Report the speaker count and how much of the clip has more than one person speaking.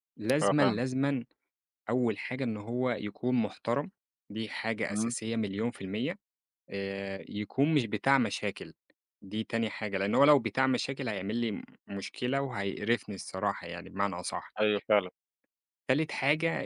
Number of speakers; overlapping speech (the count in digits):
2, about 4%